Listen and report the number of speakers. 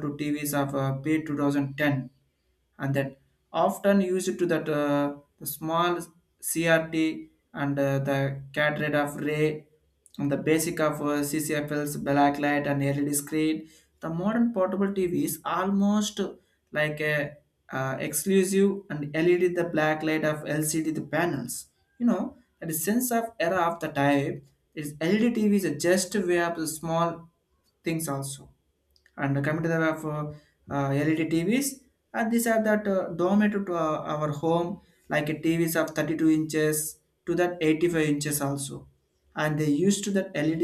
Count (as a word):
one